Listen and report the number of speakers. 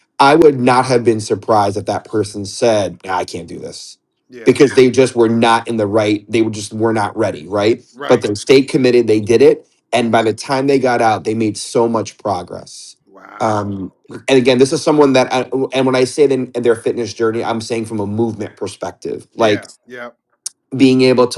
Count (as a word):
two